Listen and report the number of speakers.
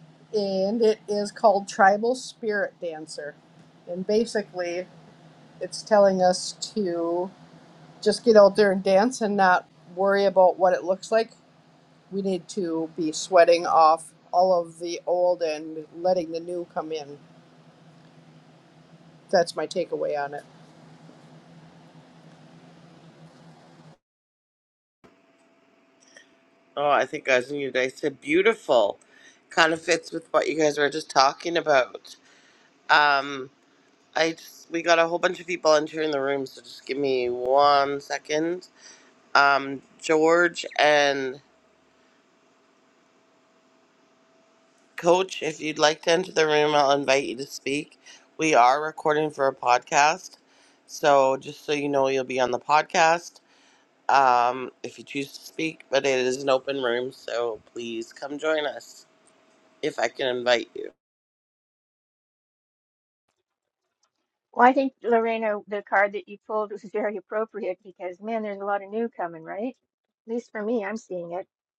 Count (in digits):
3